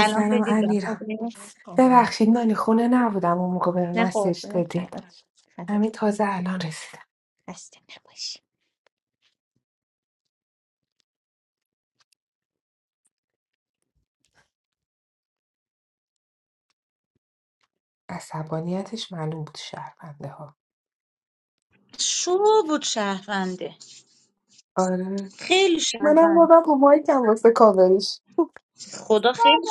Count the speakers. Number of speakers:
three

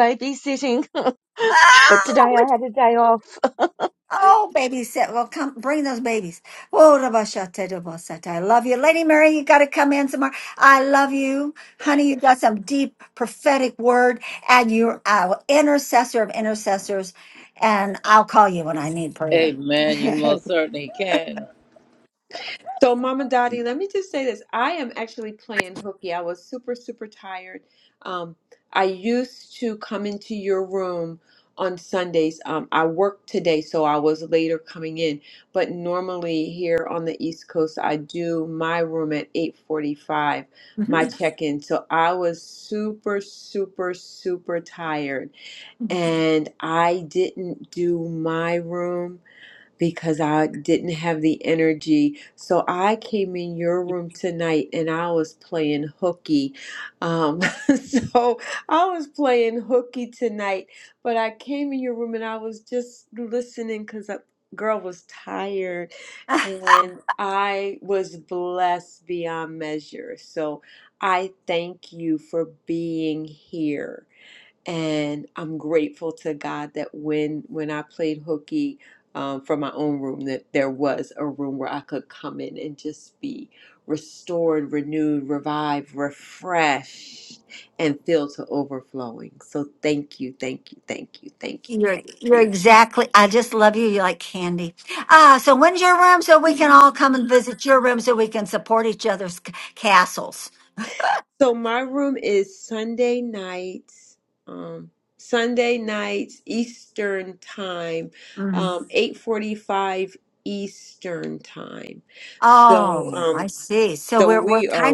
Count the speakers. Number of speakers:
four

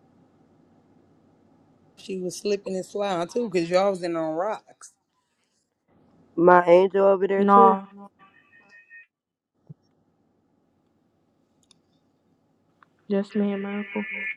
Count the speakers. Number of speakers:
three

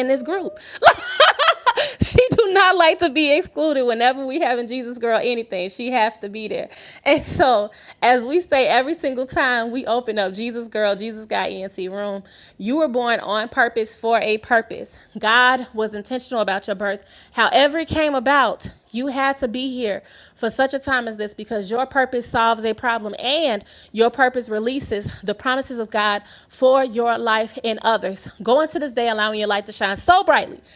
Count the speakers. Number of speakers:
one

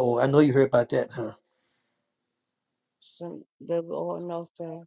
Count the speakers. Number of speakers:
two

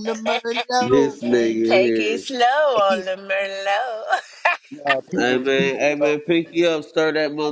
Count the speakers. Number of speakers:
three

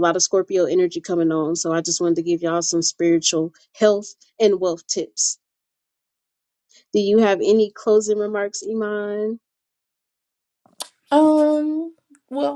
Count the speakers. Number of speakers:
two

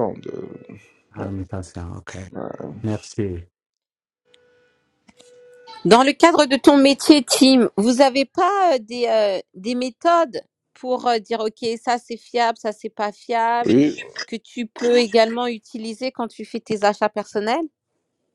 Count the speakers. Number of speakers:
three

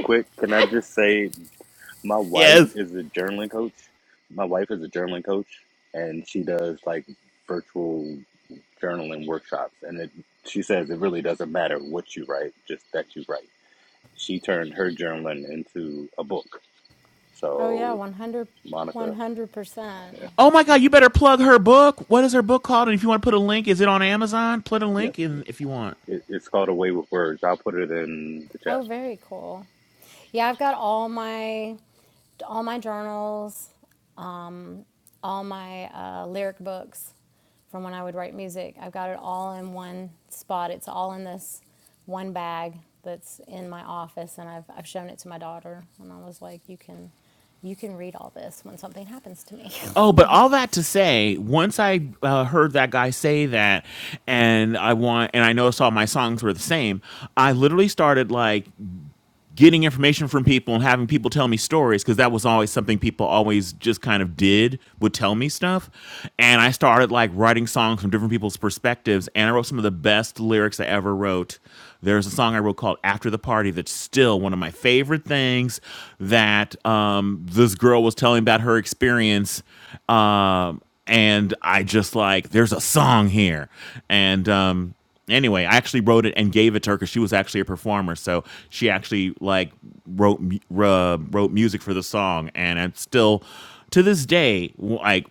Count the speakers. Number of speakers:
three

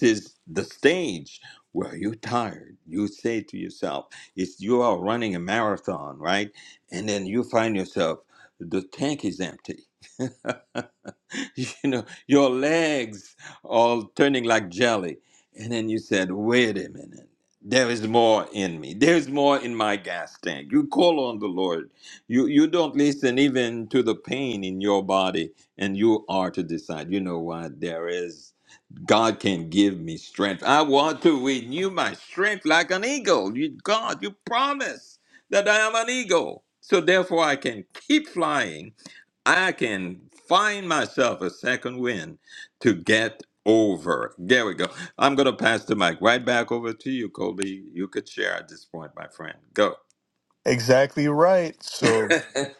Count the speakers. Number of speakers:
two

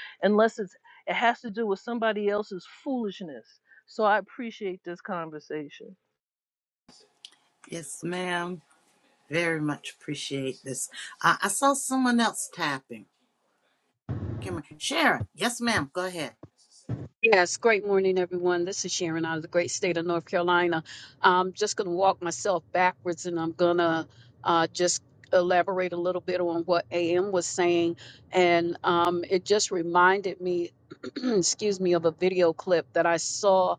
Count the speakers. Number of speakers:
three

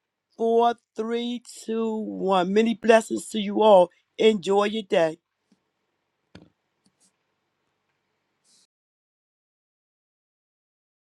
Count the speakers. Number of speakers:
one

